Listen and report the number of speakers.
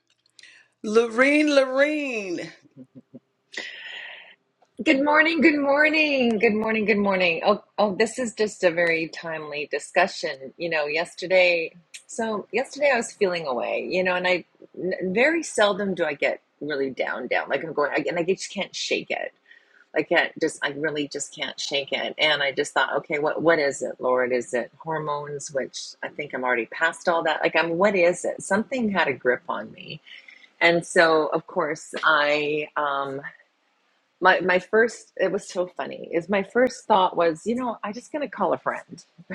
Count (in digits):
2